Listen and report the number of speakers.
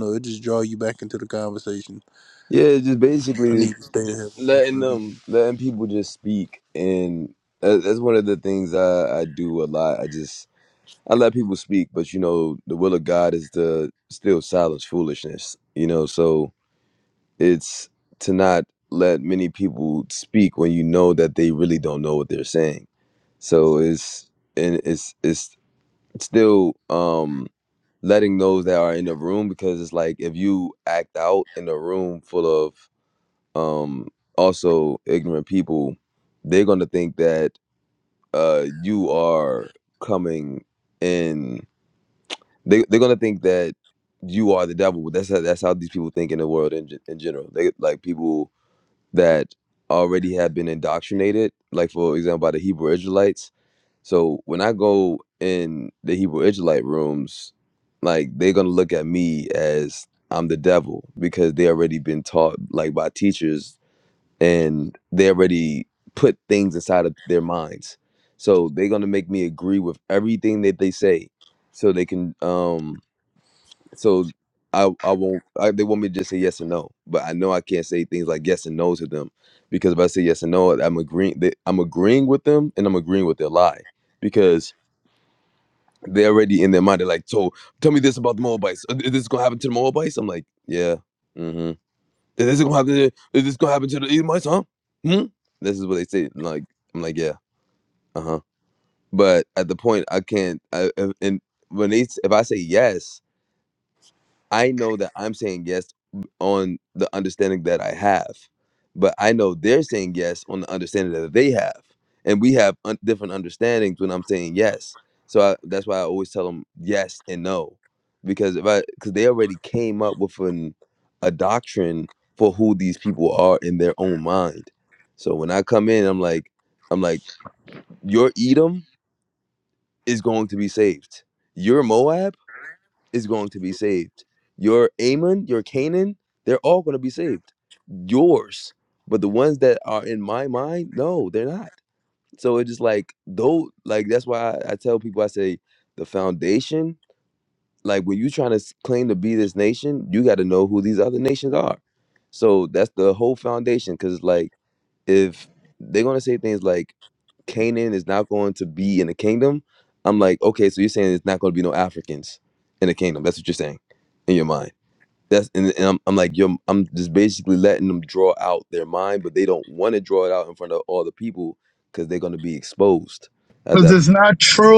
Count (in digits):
3